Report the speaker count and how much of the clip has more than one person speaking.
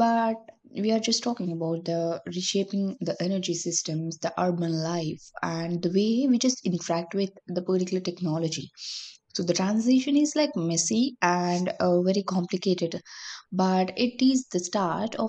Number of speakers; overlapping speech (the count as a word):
one, no overlap